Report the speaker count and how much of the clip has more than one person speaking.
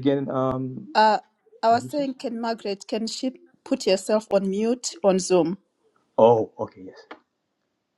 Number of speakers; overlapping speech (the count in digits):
2, about 4%